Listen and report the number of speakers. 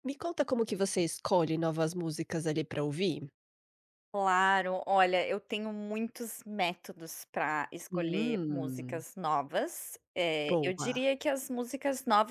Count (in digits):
2